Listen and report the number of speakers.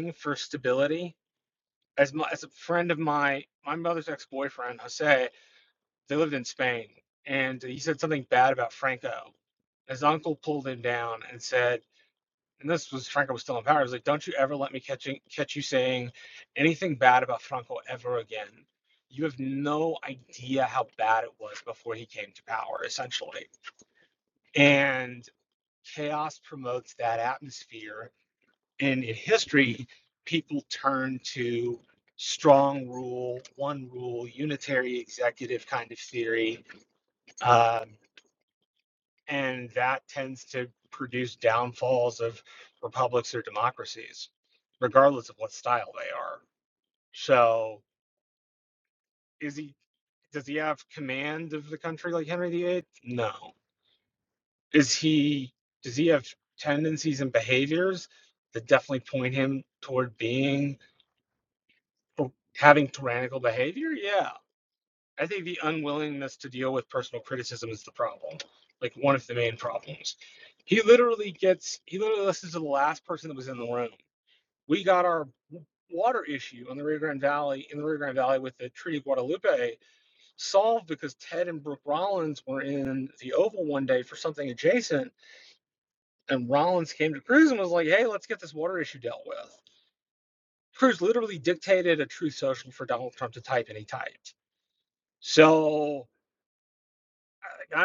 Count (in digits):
1